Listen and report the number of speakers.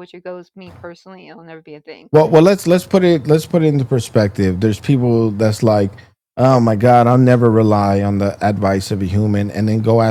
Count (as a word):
two